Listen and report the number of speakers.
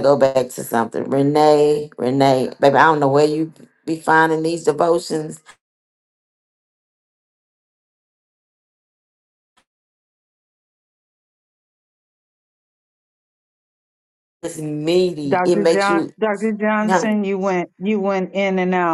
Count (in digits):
2